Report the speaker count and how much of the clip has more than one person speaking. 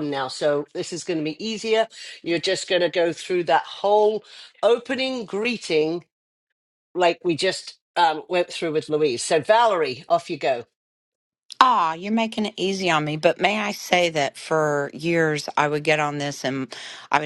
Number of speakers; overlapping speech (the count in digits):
2, no overlap